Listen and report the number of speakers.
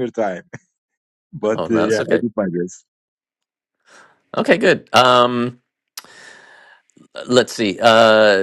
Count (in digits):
2